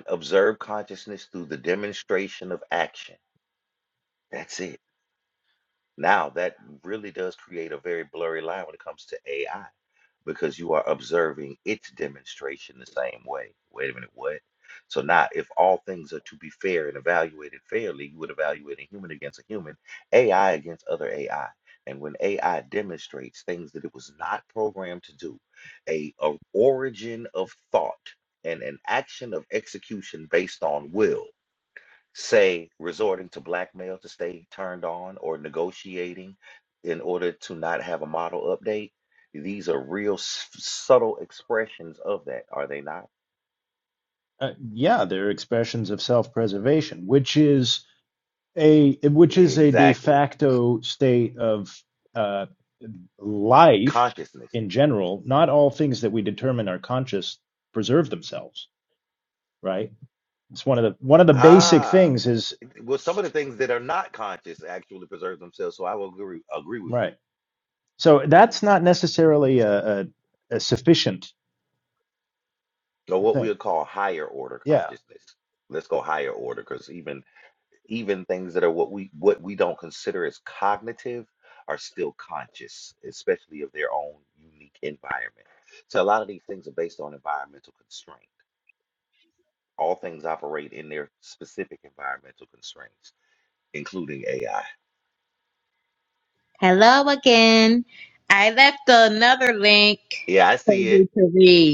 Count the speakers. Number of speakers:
3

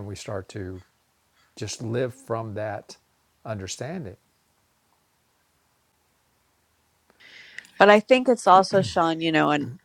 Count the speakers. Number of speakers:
2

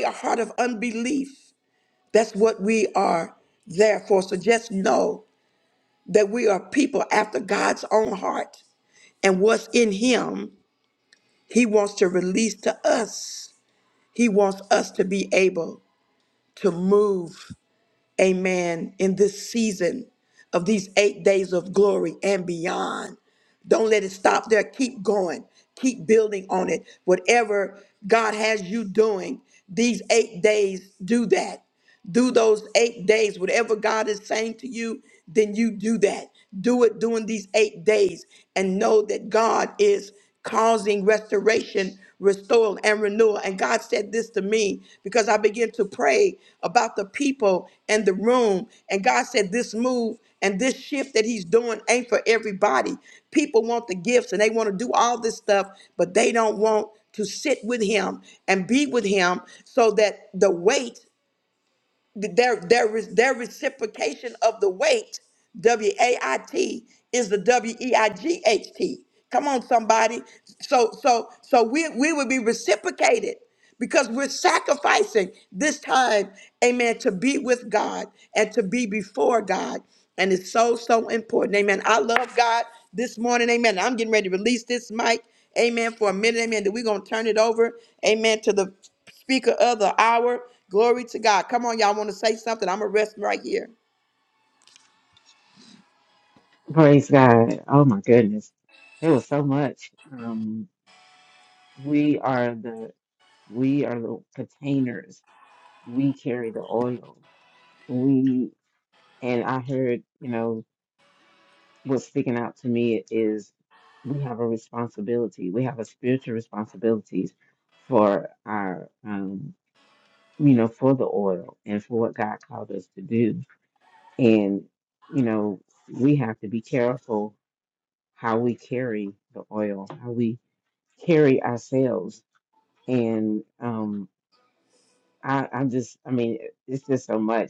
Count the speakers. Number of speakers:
2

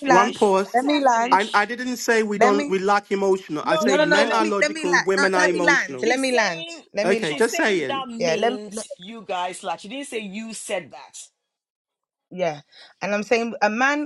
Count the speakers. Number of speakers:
3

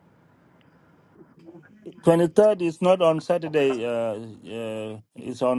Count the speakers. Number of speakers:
1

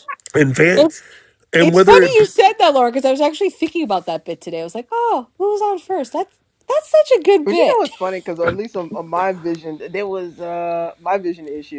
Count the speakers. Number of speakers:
3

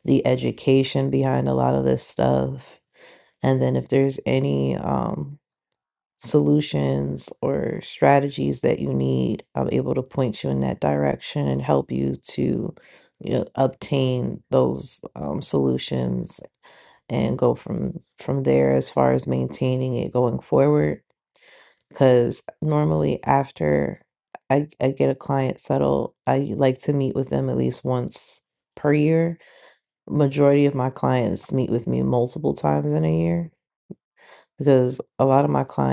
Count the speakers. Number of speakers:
1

